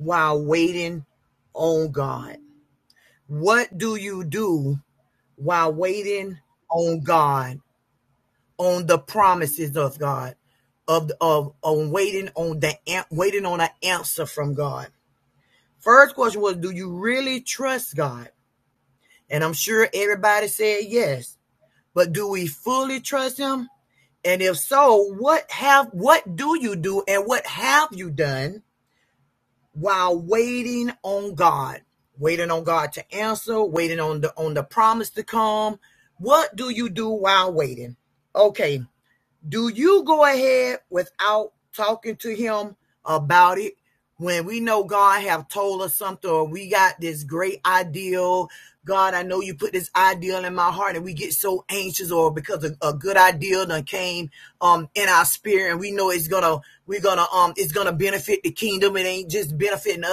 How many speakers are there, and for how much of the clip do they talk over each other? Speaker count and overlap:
1, no overlap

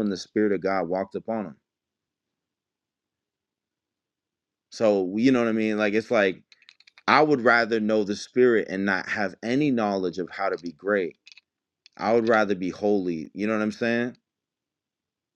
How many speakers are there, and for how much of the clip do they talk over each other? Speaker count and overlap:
1, no overlap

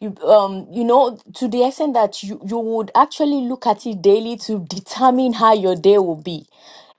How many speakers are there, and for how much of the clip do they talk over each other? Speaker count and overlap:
1, no overlap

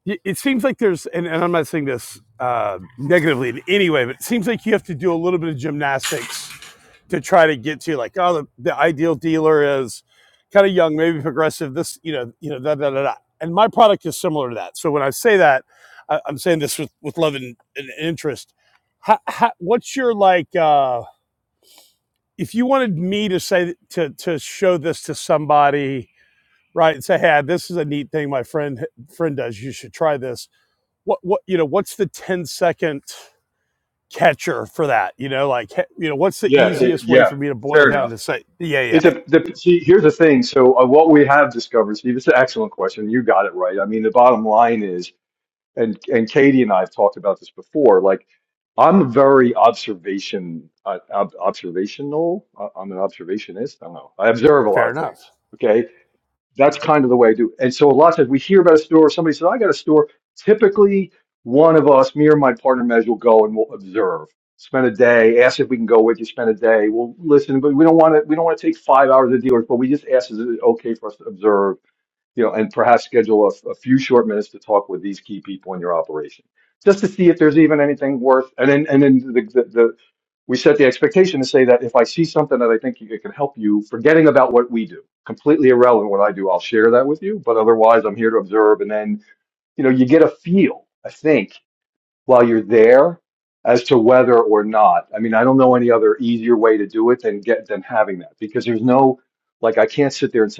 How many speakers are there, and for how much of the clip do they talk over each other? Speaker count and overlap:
2, about 2%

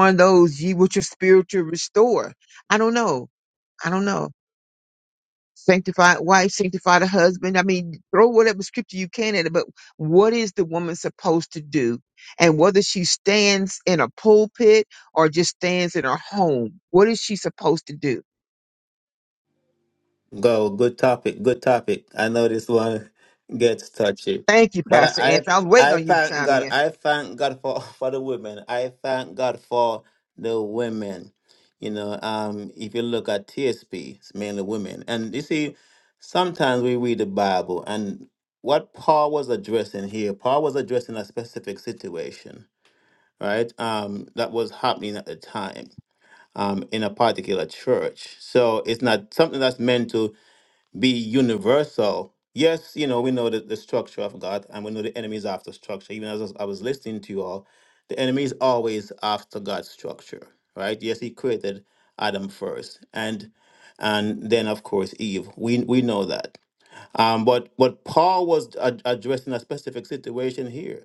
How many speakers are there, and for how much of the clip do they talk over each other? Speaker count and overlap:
2, about 3%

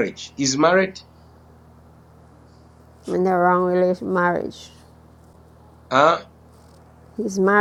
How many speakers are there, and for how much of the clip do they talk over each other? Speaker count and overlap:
2, no overlap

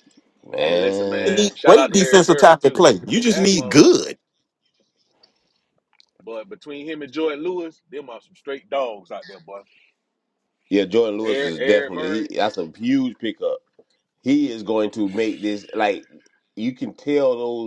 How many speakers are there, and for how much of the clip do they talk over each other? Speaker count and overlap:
3, about 23%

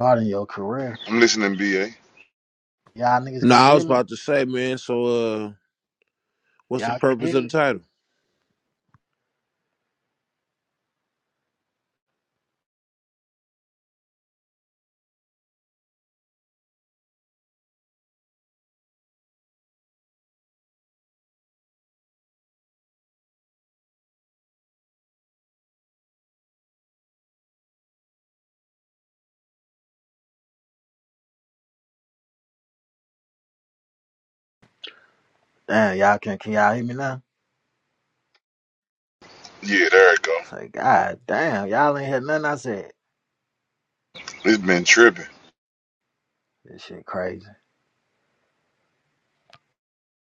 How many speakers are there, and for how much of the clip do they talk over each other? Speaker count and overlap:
3, about 3%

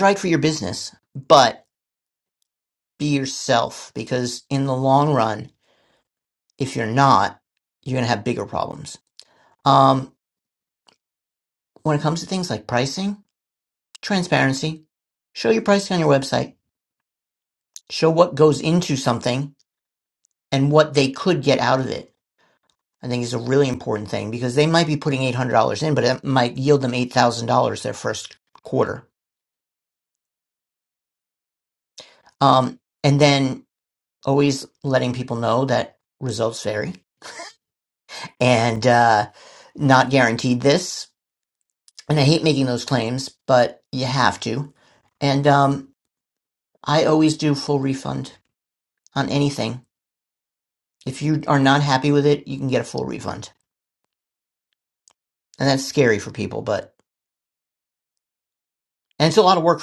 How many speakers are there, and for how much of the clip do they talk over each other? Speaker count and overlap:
1, no overlap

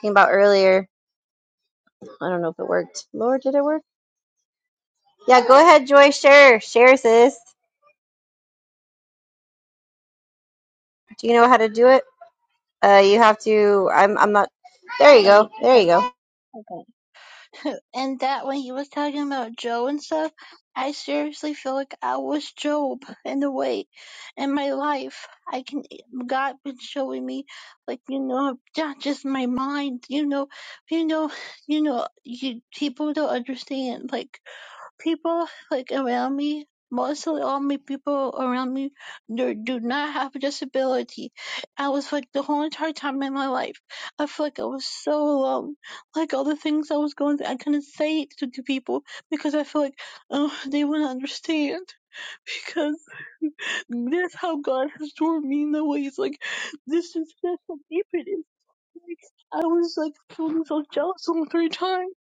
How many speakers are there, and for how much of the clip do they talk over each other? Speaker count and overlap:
2, about 1%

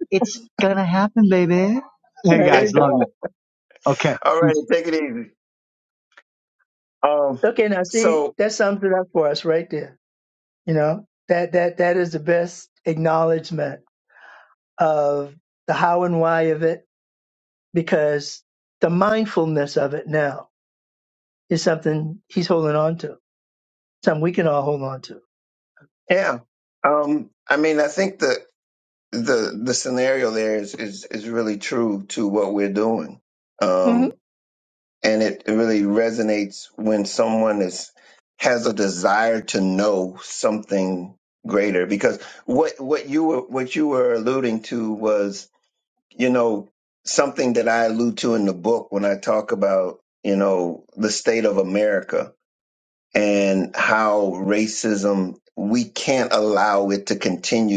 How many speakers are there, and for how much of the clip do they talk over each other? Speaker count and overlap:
3, about 3%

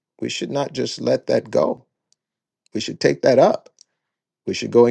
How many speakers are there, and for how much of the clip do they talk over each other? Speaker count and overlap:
1, no overlap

